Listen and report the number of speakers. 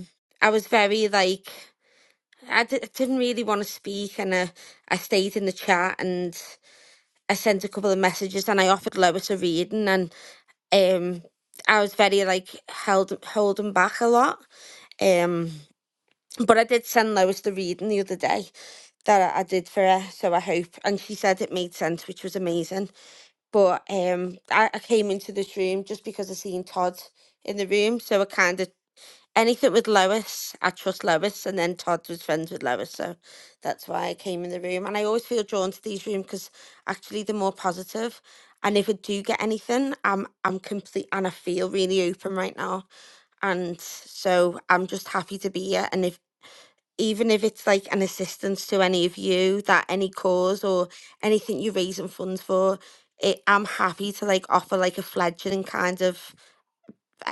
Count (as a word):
one